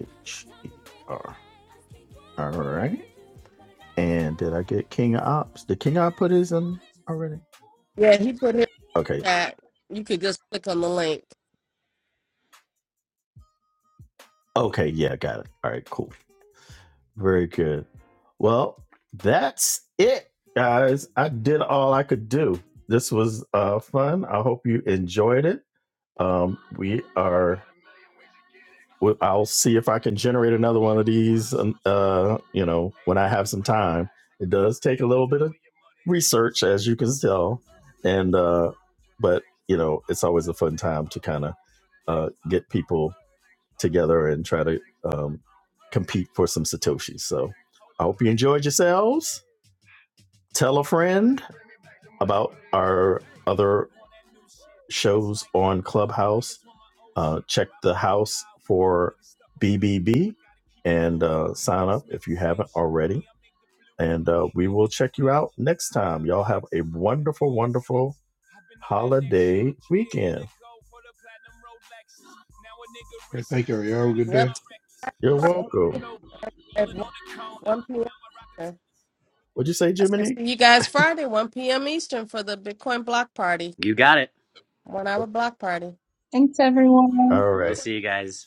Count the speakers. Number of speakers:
five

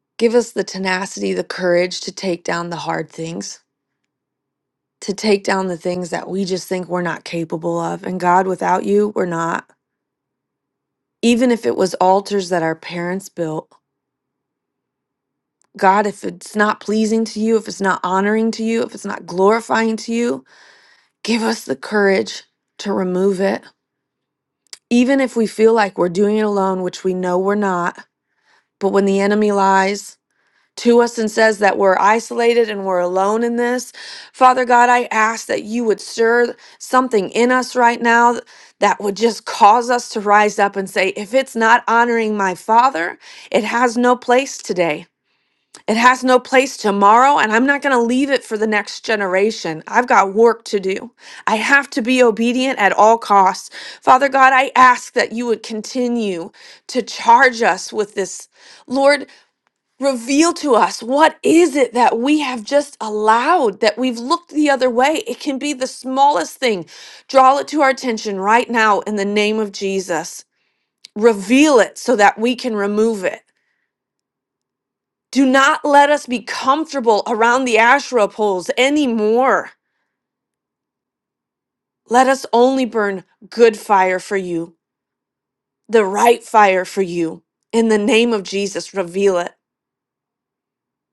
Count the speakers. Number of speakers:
one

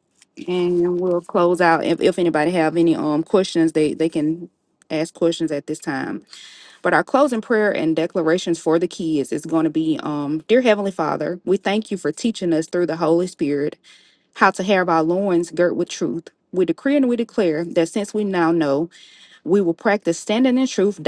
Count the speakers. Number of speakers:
one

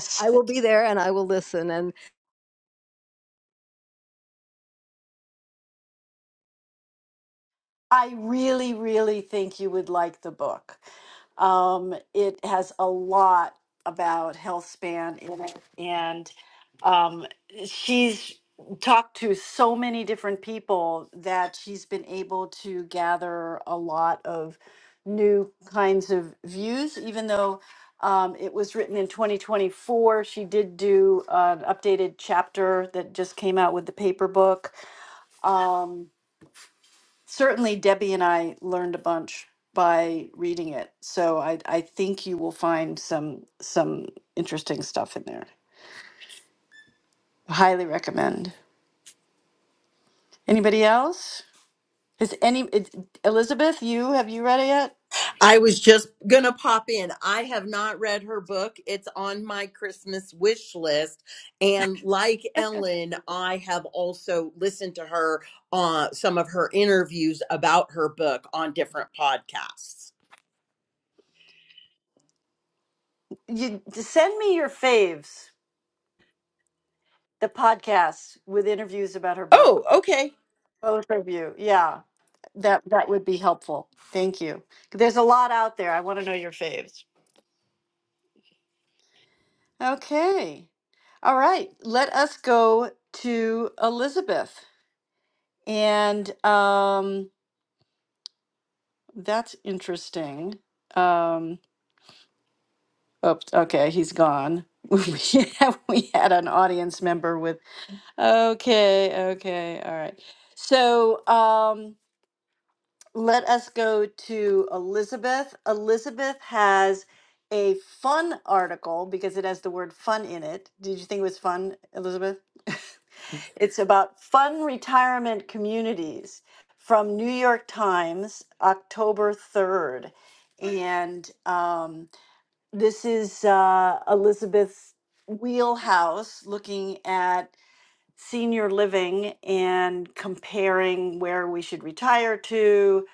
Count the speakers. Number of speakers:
three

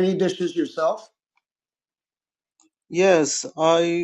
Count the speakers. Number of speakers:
two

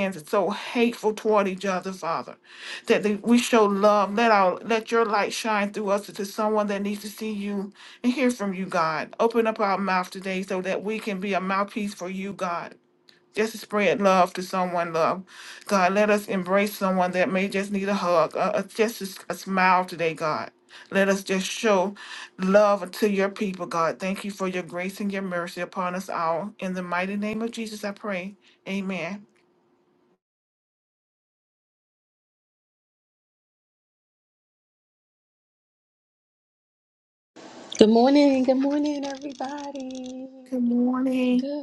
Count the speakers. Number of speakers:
two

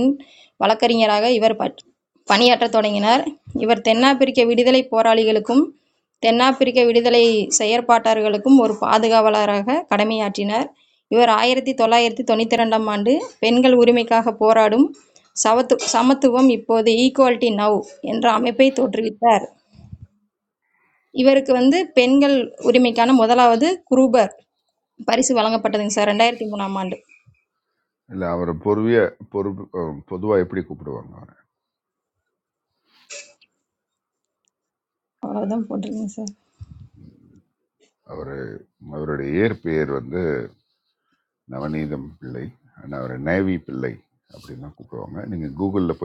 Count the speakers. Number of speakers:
two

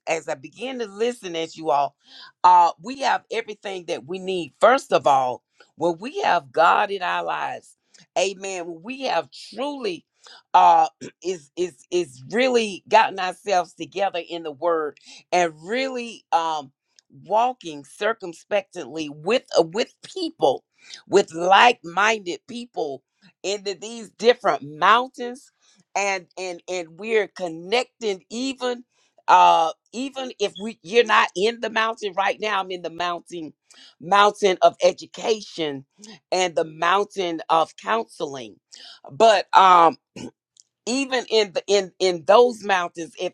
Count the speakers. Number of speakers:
one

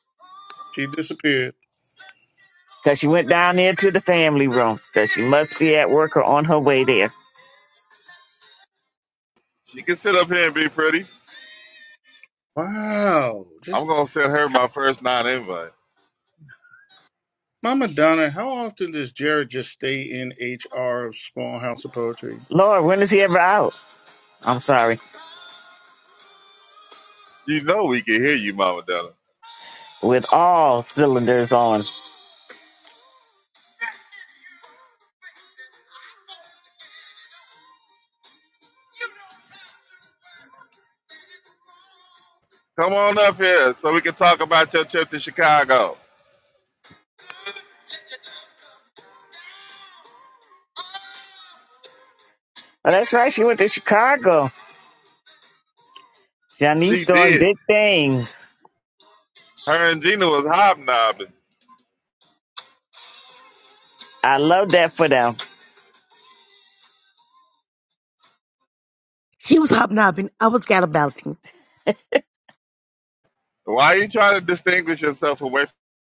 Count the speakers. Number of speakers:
four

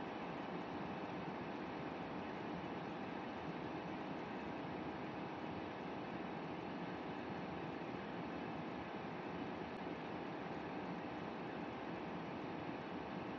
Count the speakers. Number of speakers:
zero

